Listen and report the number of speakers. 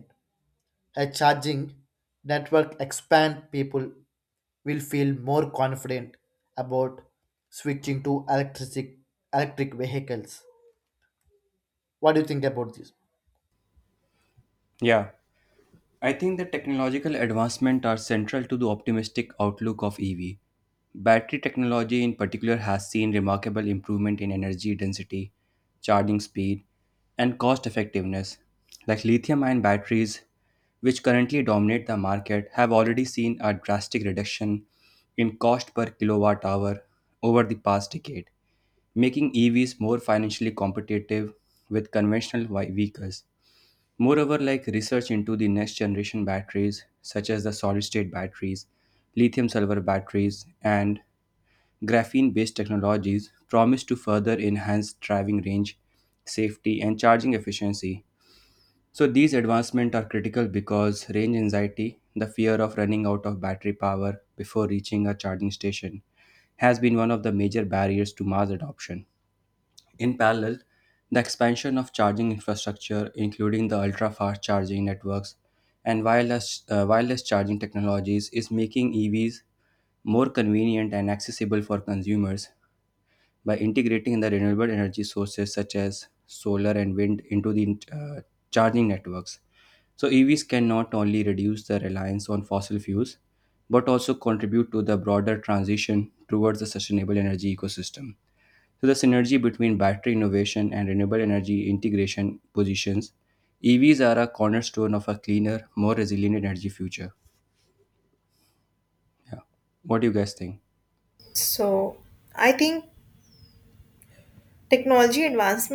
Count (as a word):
three